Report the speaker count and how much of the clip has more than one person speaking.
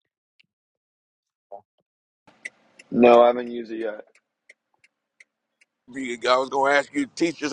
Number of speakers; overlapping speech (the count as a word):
two, no overlap